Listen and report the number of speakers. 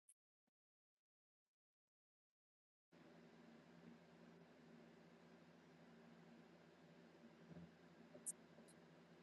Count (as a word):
zero